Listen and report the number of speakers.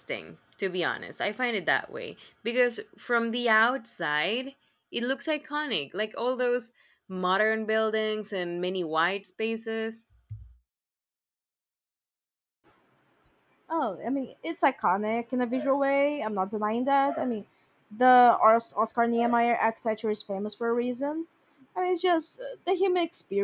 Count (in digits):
2